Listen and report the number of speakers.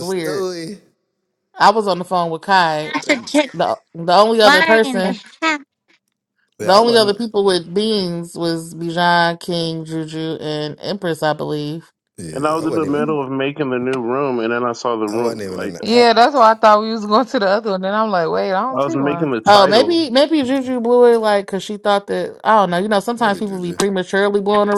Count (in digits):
5